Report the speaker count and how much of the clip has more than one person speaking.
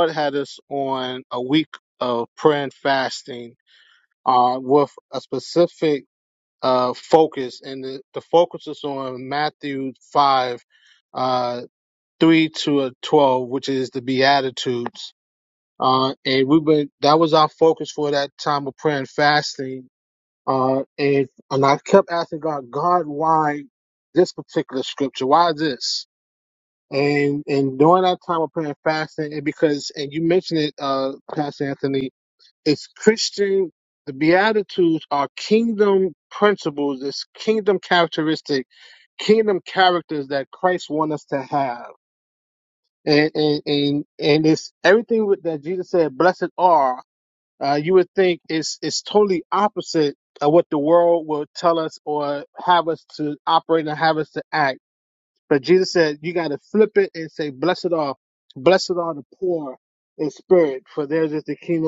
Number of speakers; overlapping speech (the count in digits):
1, no overlap